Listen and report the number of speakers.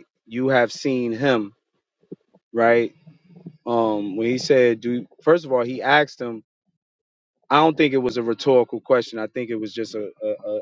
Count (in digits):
1